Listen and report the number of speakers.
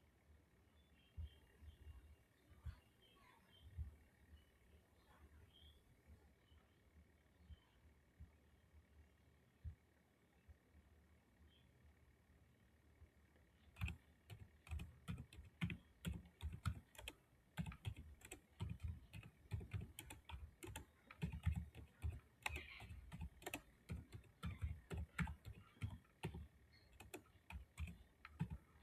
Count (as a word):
zero